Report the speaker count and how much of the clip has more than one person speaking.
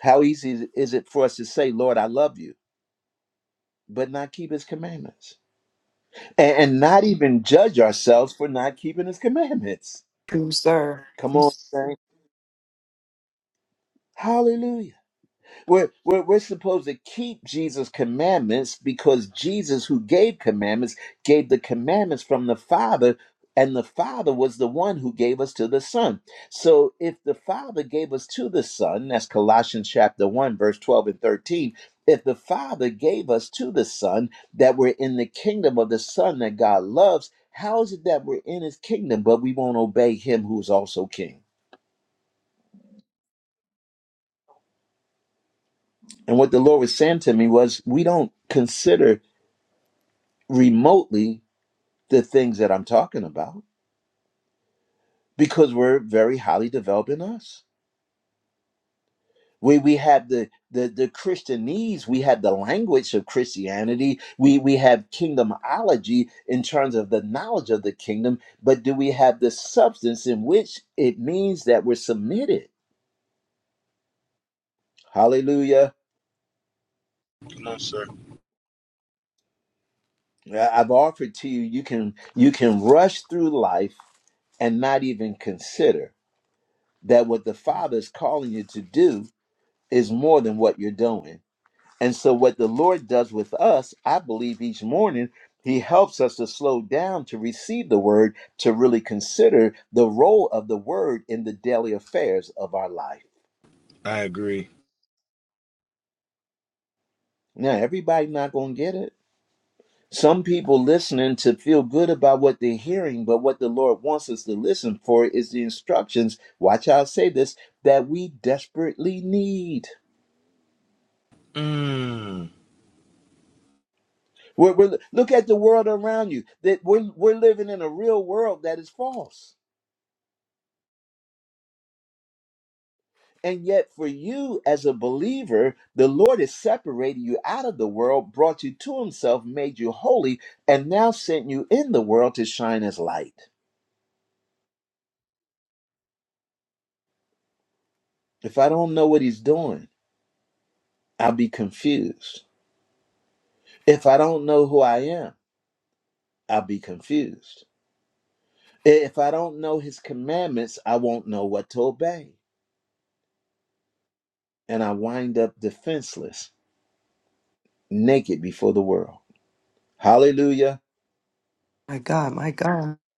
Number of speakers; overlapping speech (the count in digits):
3, under 1%